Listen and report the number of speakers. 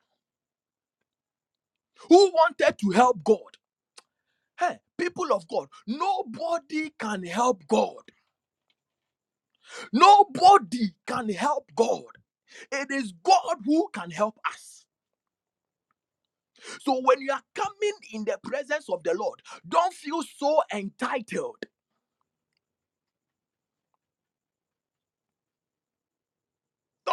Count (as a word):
one